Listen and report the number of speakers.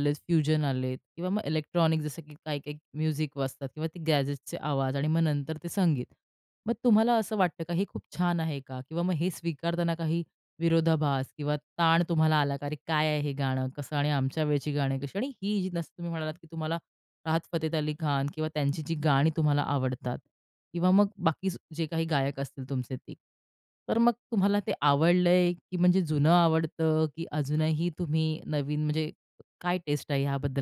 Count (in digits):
1